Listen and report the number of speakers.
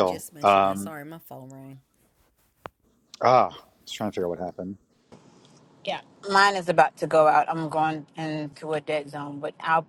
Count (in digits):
3